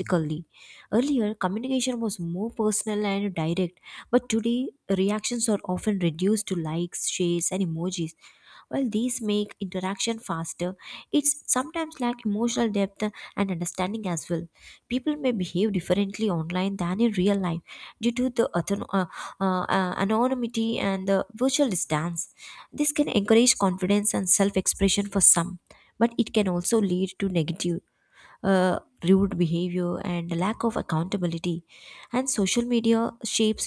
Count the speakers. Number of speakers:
one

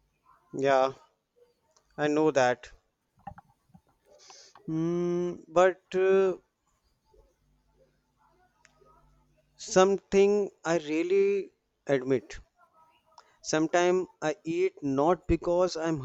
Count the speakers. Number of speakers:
one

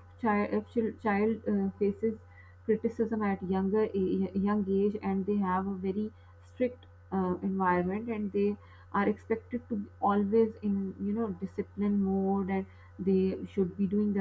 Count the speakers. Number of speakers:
one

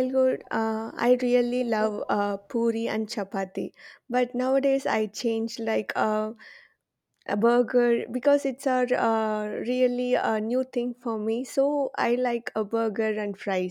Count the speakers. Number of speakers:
one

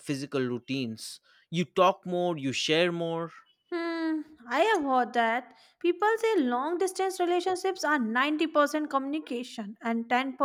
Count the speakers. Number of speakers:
two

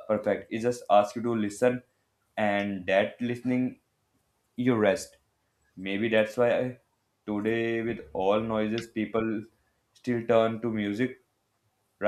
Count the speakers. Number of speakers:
one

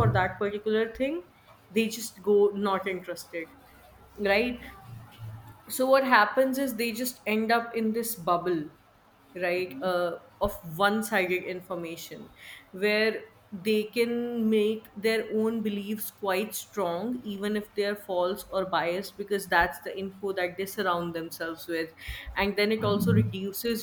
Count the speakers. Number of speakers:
one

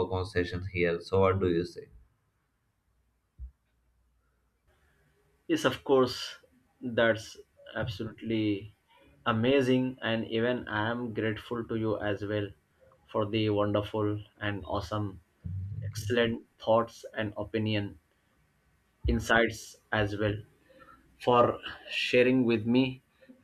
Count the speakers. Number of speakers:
two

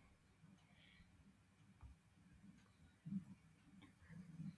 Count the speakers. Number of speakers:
zero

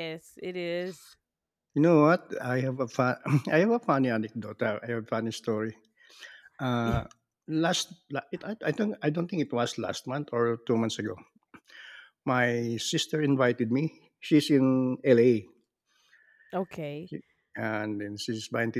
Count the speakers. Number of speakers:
two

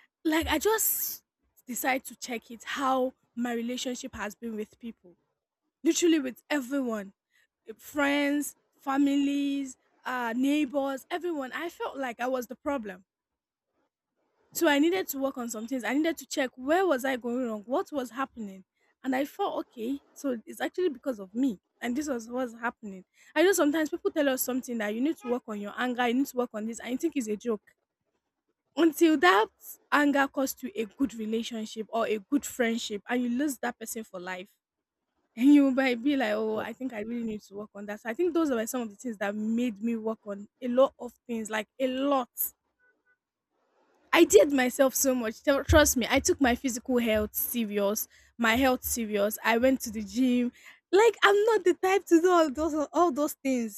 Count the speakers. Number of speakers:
one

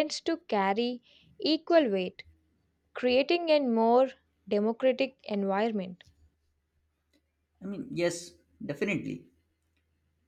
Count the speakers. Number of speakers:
two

